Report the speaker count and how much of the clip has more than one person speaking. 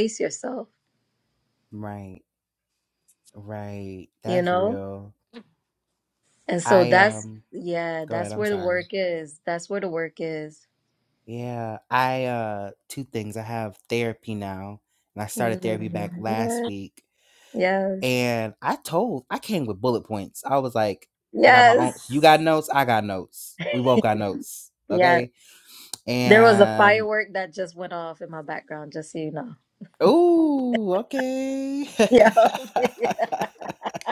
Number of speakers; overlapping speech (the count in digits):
2, about 13%